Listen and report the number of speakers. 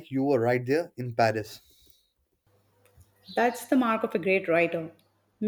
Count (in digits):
2